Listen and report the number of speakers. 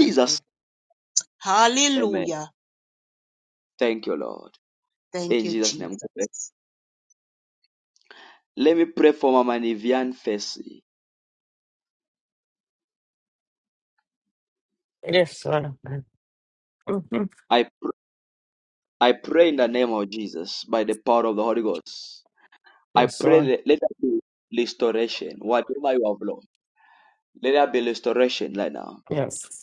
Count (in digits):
3